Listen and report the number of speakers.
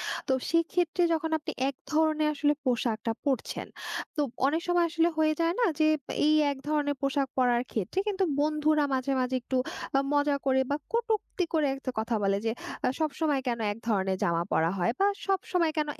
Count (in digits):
1